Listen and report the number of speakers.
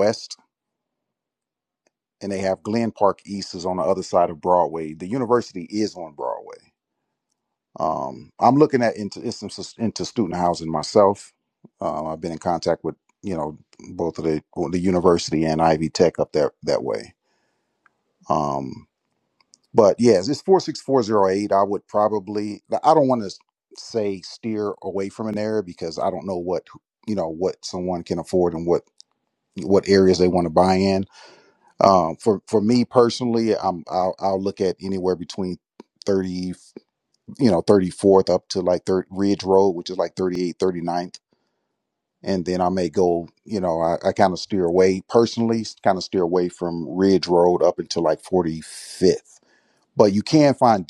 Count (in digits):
1